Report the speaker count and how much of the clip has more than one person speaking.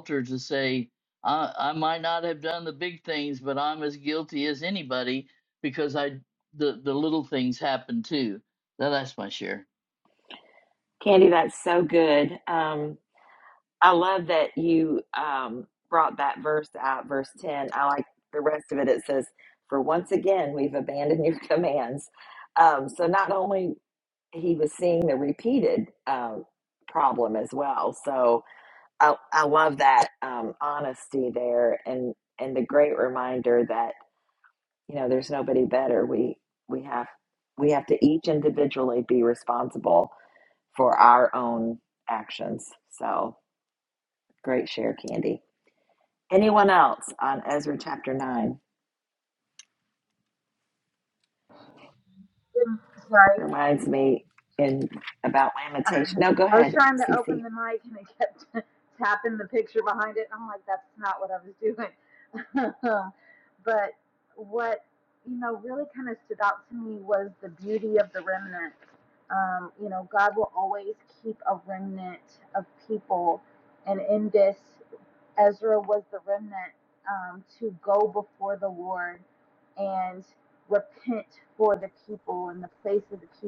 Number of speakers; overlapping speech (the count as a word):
three, about 1%